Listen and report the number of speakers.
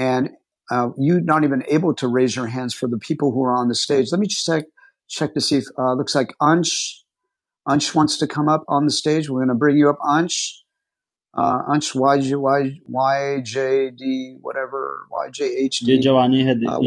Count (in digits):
2